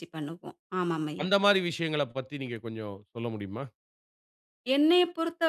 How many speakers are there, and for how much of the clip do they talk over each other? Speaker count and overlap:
two, about 2%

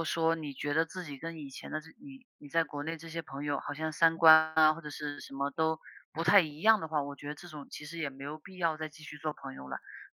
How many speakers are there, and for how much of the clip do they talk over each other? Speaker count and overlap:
one, no overlap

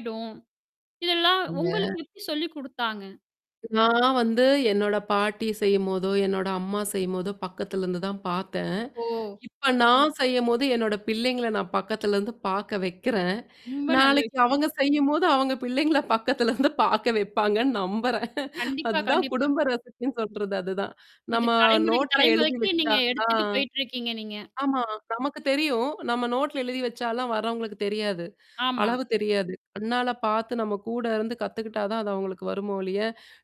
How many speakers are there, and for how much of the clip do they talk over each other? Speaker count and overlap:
two, about 12%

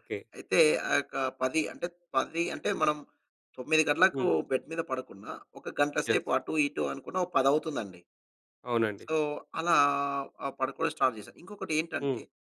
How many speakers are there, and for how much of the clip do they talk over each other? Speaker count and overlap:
two, about 4%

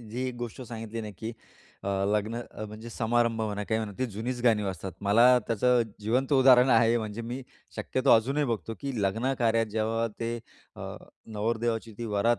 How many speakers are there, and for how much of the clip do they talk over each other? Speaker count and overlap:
one, no overlap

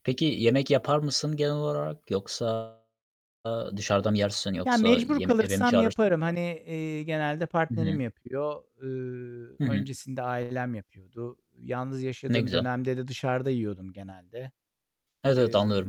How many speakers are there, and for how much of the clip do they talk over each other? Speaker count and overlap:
two, about 19%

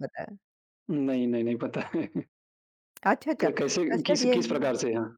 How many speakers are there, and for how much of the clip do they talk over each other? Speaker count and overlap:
two, about 17%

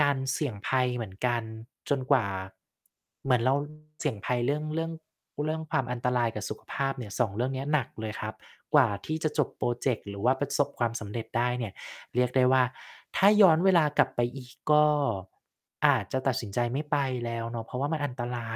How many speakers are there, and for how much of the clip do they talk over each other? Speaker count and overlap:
one, no overlap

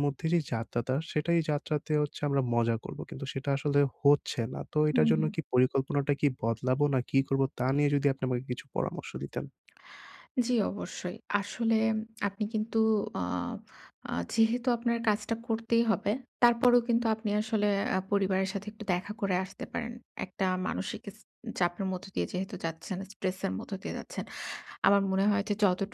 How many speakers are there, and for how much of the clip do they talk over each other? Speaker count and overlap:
two, about 2%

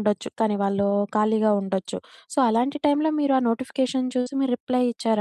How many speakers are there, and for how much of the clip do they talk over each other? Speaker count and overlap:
one, no overlap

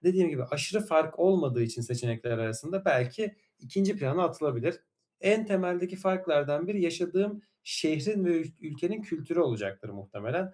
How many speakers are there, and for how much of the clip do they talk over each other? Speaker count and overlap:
one, no overlap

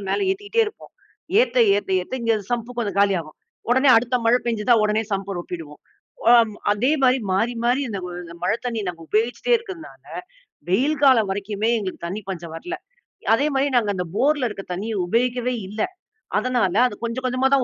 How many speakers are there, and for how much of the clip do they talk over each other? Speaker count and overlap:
one, no overlap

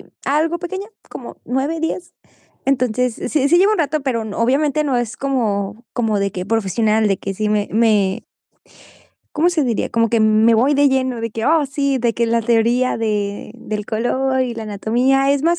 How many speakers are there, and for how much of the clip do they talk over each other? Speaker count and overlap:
one, no overlap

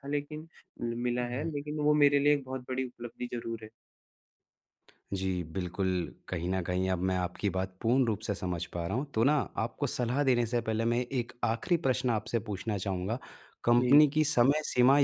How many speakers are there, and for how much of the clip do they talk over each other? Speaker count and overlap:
two, about 3%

